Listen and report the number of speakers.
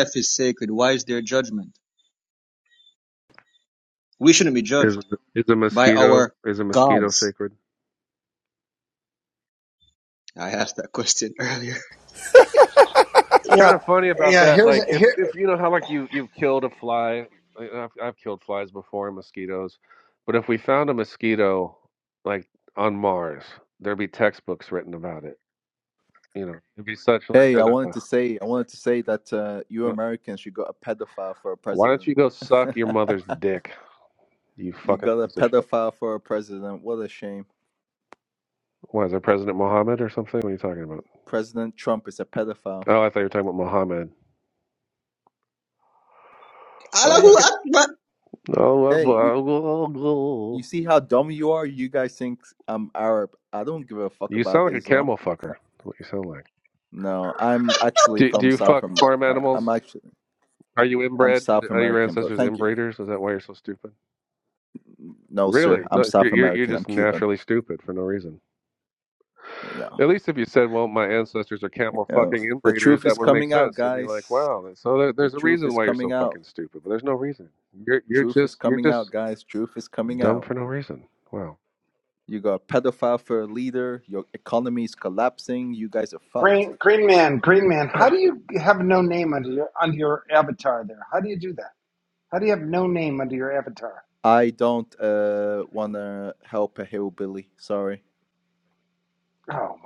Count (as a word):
four